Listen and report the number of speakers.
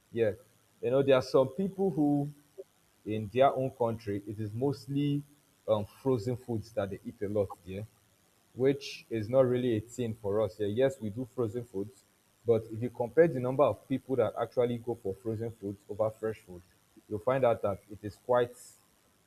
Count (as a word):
one